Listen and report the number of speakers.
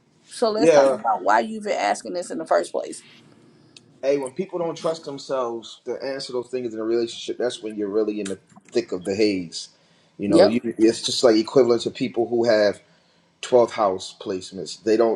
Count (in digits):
2